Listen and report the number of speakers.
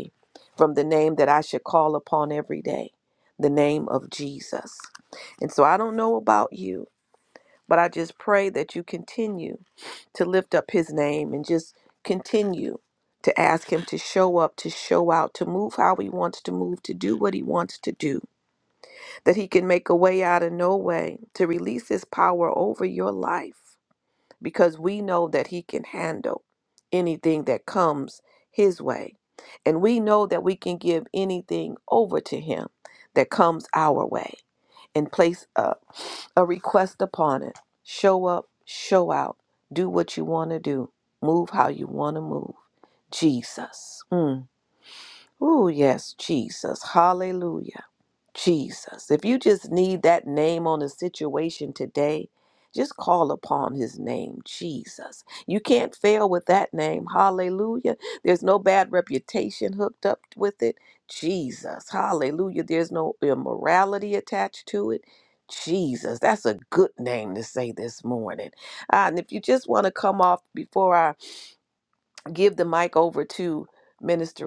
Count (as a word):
one